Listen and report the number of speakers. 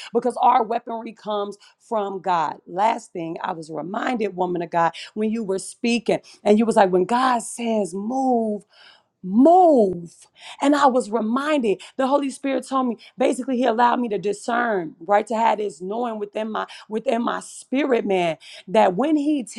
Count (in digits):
1